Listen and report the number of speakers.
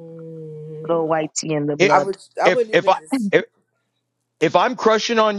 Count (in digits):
3